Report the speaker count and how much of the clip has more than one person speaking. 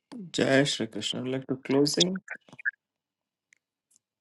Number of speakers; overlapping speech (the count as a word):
one, no overlap